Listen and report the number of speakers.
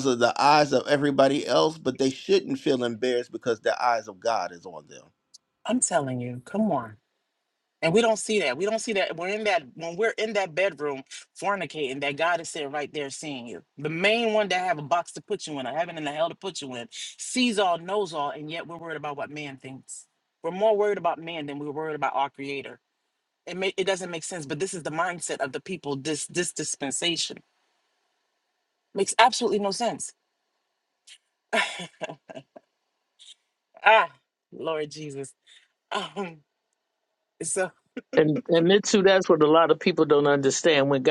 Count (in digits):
3